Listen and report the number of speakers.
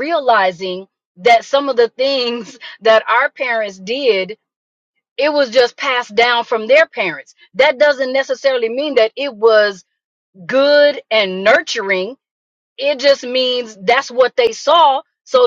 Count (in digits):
1